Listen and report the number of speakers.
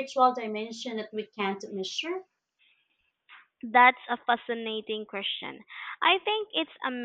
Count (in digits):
2